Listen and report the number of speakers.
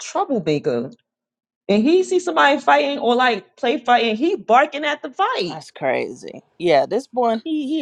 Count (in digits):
2